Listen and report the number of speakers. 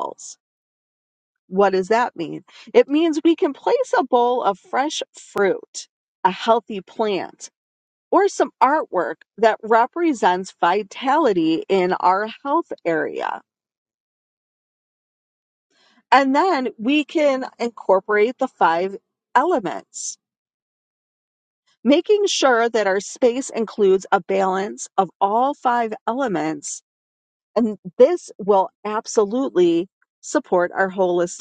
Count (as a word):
one